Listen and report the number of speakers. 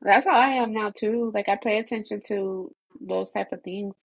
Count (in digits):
1